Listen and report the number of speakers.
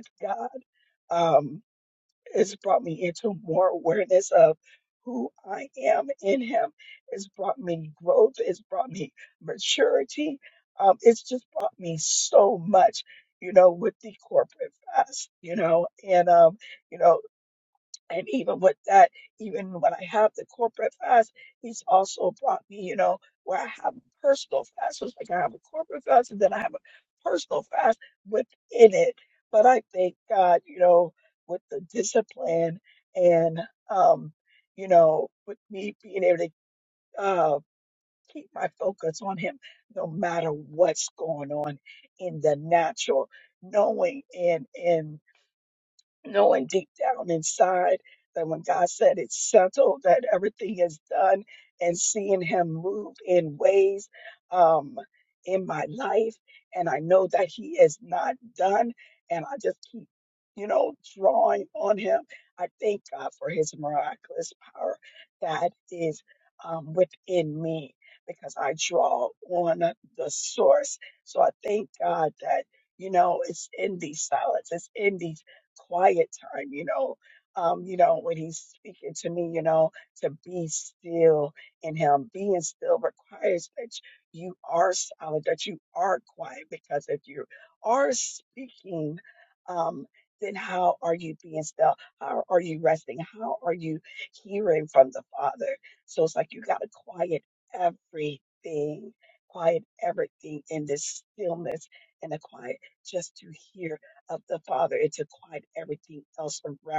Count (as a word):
one